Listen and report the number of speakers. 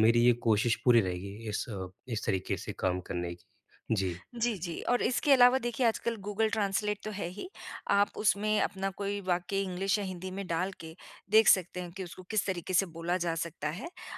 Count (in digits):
2